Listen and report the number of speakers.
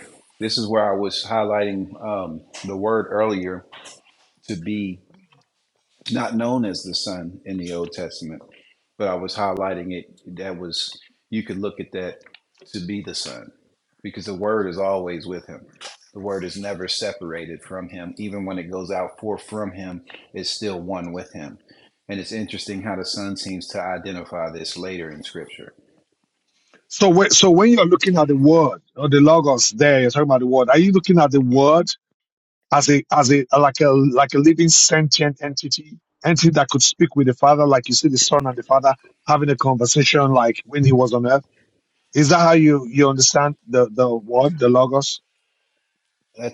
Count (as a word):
two